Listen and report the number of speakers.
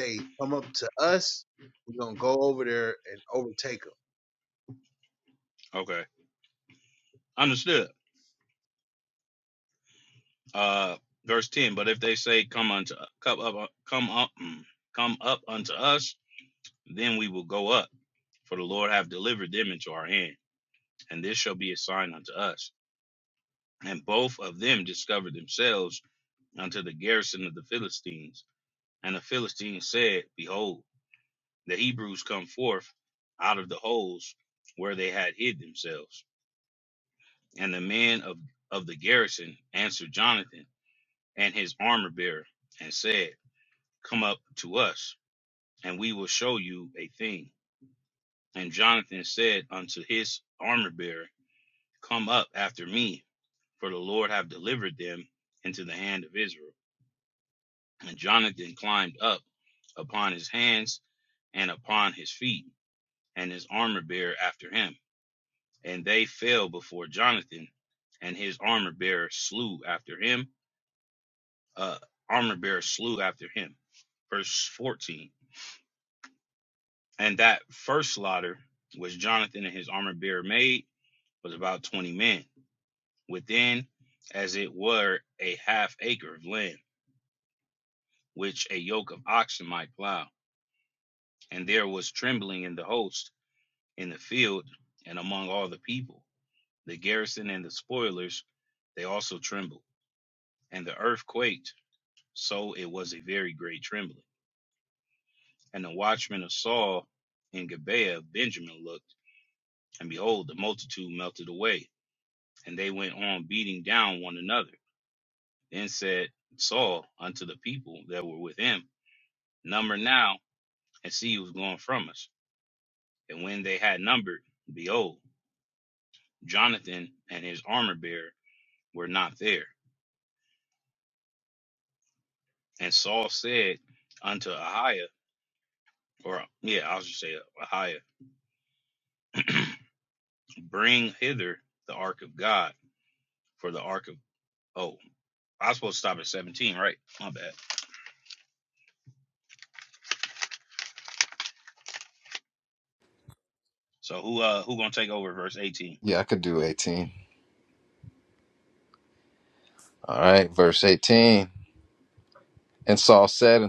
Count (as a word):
three